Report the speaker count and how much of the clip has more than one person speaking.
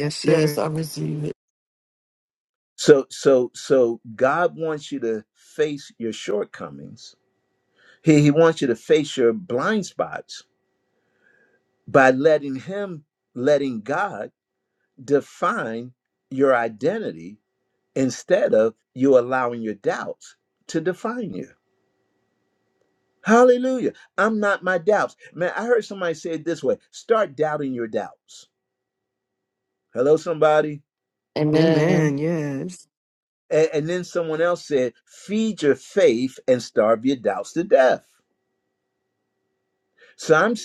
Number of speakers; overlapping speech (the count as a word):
three, about 2%